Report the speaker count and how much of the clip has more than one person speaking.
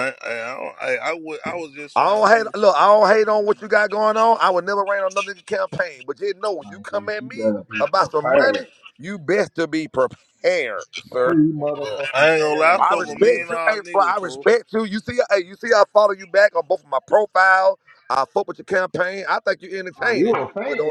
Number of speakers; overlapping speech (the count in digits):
3, about 25%